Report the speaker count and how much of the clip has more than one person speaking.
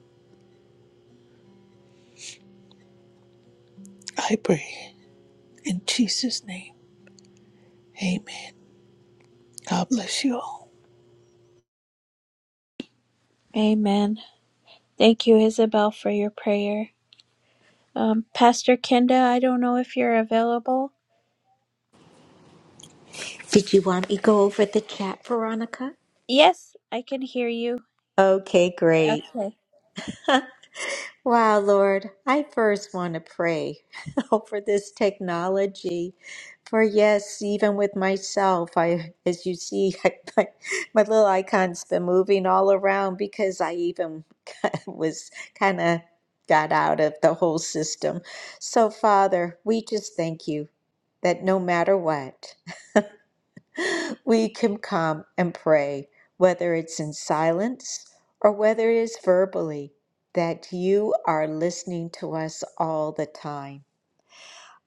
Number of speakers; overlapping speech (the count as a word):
three, no overlap